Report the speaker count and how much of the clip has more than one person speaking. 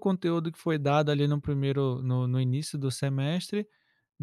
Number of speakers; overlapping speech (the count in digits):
1, no overlap